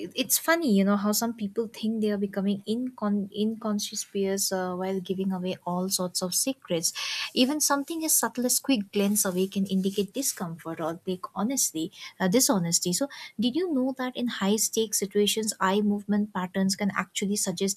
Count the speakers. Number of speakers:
1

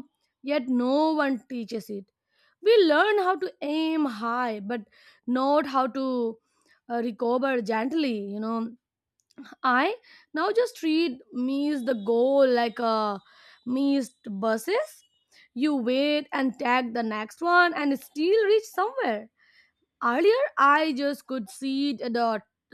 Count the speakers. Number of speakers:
1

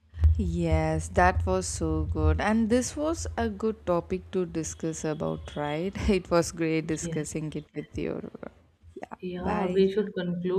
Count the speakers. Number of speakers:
2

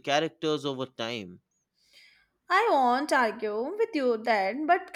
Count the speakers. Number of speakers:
2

